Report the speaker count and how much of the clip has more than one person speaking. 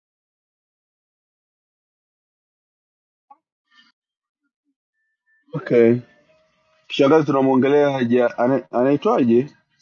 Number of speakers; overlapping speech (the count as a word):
one, no overlap